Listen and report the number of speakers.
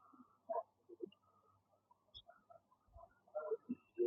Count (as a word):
zero